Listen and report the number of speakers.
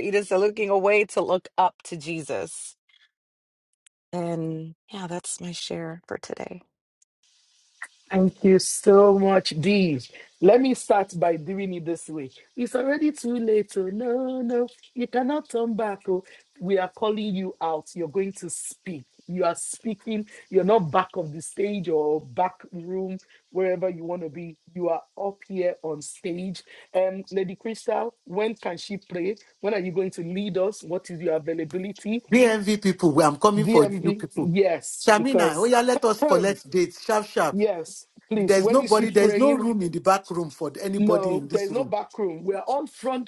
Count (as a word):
three